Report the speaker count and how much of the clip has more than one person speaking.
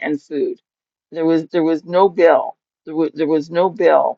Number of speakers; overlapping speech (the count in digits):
1, no overlap